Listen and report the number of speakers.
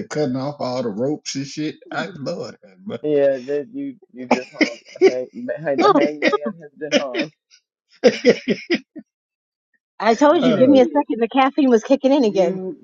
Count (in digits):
3